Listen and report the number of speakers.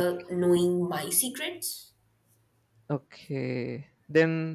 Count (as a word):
two